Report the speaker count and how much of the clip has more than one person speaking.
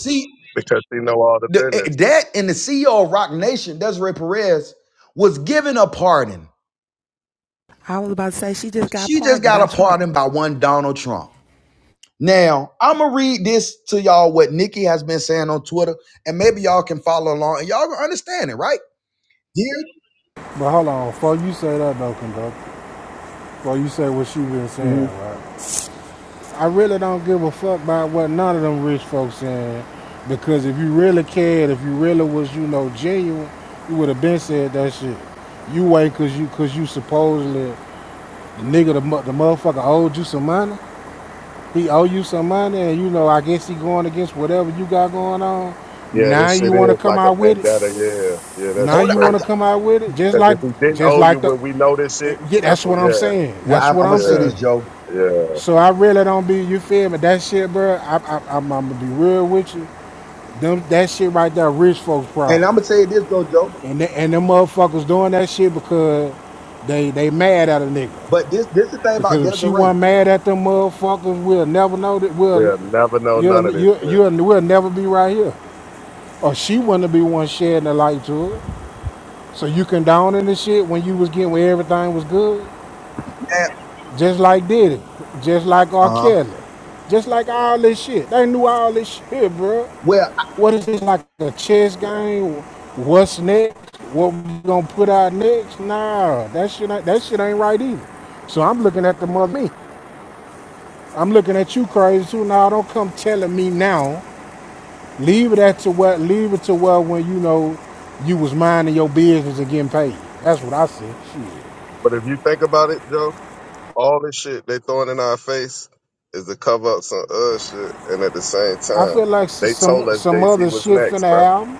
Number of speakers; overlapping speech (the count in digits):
4, about 10%